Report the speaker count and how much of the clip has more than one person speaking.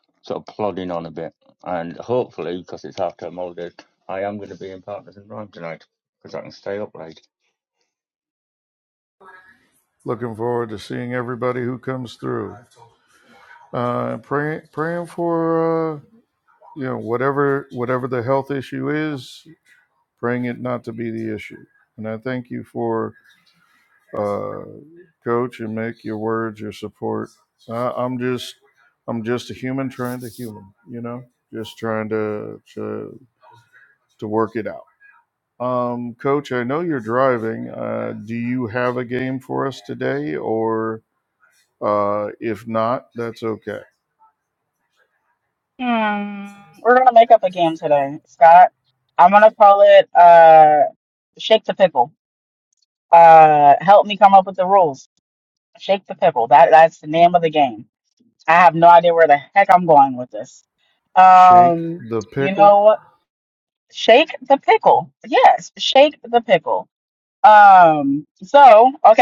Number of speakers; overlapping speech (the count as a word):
three, about 1%